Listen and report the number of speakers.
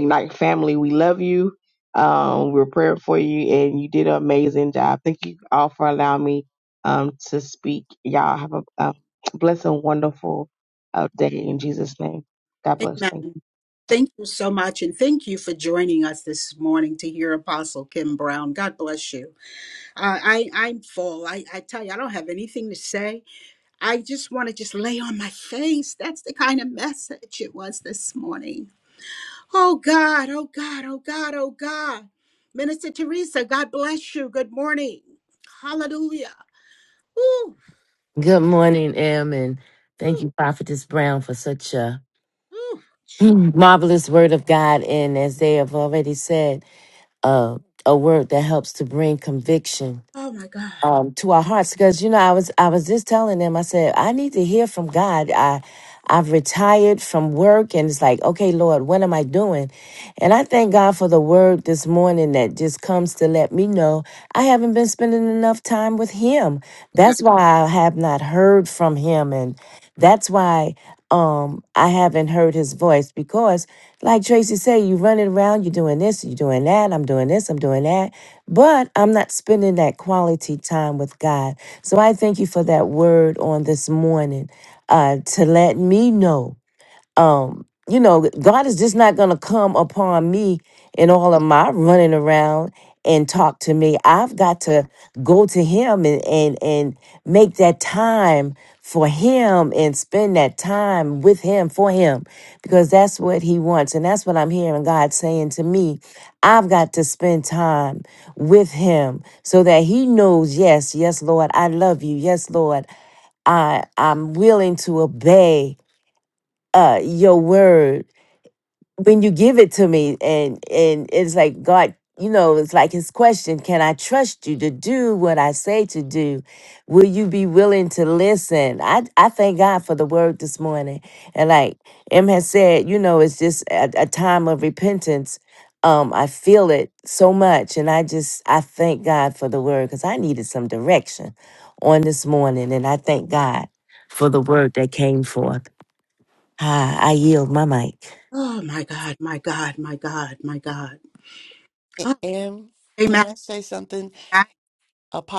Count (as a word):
four